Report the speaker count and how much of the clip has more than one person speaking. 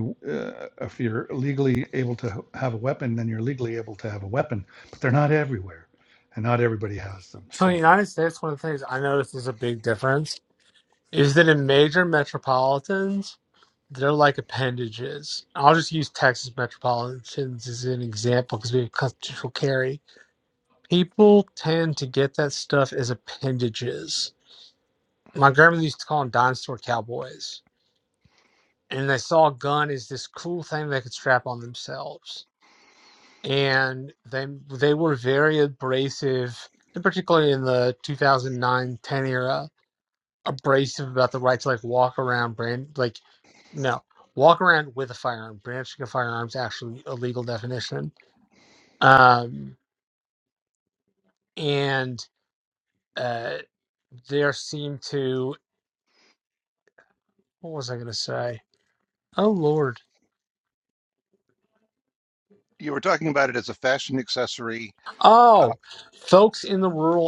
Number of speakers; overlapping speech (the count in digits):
3, about 1%